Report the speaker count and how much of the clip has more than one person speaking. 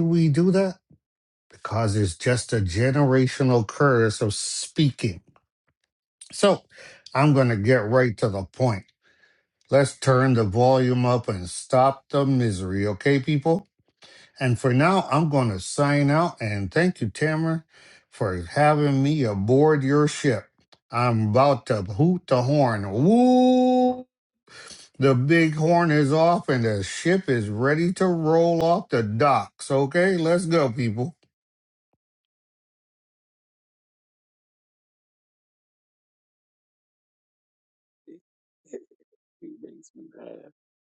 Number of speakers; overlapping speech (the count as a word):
two, no overlap